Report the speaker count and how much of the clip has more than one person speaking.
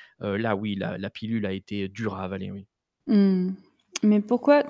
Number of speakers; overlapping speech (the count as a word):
two, no overlap